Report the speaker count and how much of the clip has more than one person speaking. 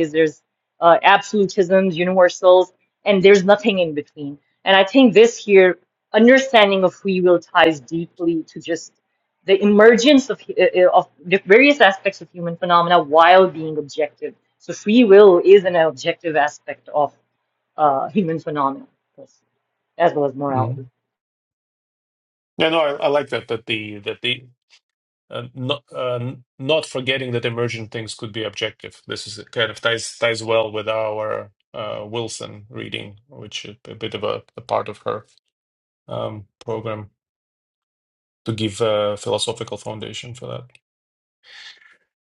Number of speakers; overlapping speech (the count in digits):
2, about 1%